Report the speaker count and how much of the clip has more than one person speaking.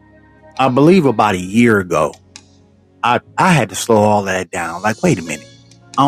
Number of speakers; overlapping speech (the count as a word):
one, no overlap